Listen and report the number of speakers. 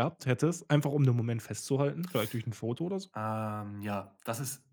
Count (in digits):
2